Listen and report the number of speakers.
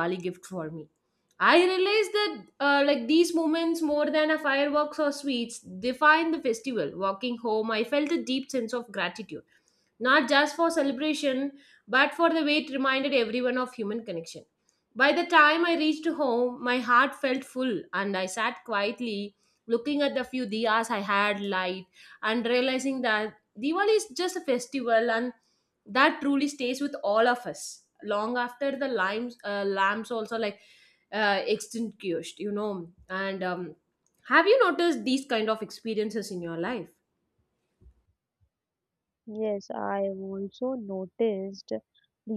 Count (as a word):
two